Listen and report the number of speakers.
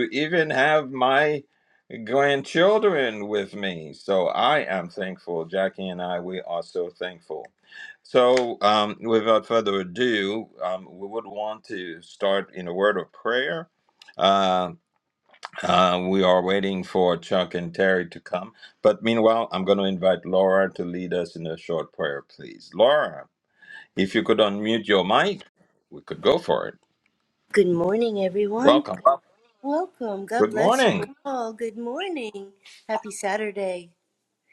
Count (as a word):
two